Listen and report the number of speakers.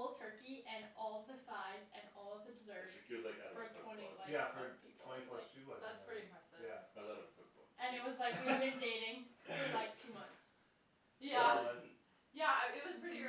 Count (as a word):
four